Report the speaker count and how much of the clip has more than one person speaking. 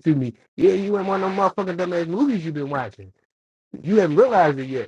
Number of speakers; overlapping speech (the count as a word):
one, no overlap